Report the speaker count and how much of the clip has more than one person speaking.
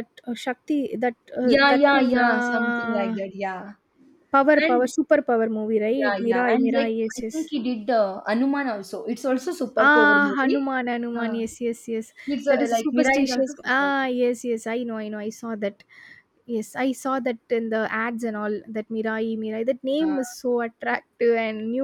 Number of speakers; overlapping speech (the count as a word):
two, about 28%